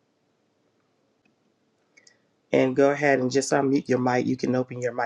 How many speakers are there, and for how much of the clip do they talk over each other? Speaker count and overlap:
1, no overlap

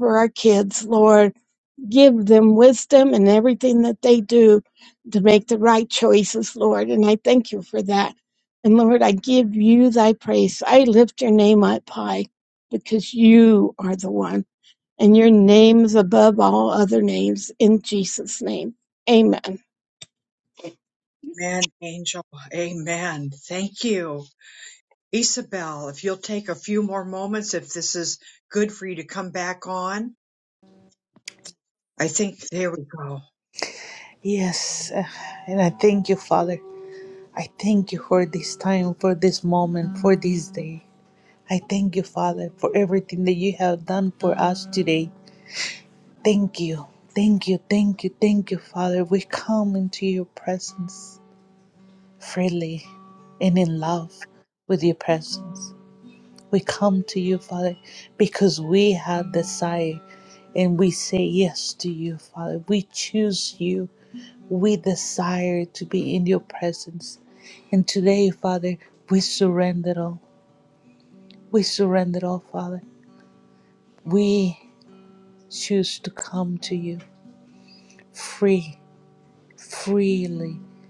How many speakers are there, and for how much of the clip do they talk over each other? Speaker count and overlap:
3, no overlap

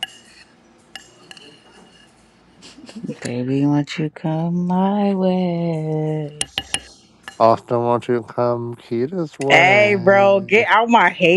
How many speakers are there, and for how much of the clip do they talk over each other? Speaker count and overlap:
2, about 7%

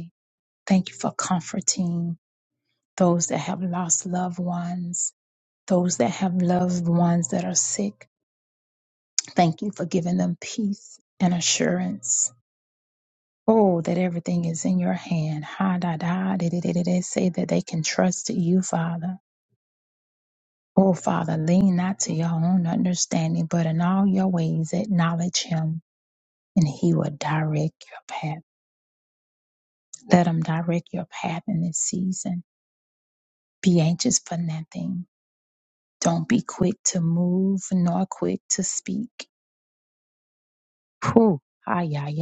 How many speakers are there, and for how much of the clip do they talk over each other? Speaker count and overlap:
1, no overlap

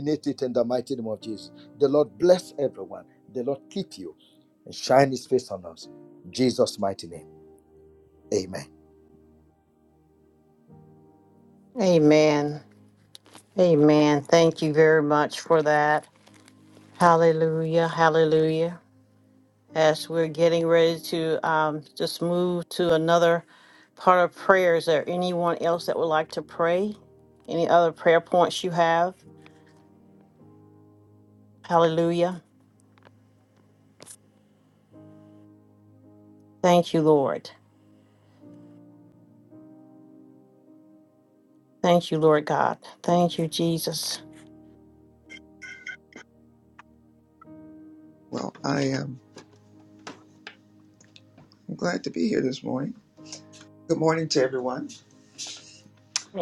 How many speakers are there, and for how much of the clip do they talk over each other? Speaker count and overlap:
3, no overlap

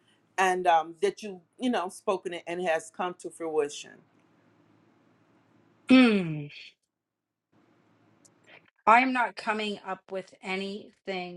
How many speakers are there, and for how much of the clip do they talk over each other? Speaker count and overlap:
2, no overlap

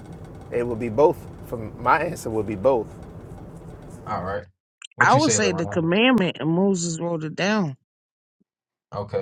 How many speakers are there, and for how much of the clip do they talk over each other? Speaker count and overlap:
3, about 9%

